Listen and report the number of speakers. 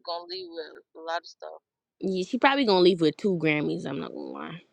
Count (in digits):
2